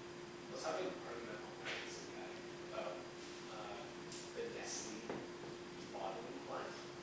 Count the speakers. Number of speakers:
1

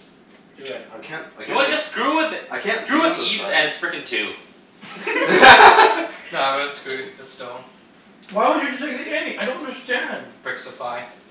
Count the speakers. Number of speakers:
4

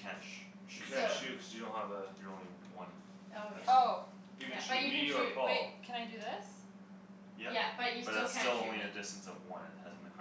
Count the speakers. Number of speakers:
4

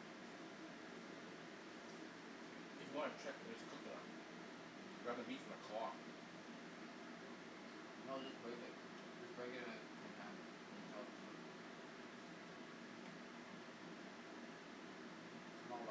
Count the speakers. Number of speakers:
2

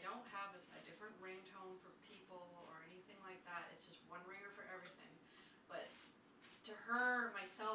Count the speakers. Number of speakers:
1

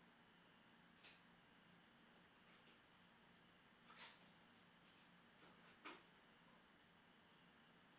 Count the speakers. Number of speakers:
0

